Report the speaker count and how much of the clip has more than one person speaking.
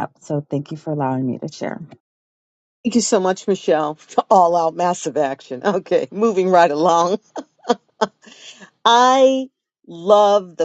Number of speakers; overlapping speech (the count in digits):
2, no overlap